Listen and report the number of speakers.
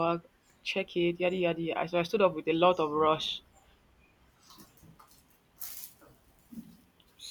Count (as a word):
one